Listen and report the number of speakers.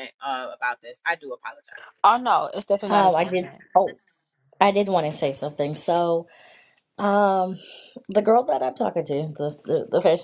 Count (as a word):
three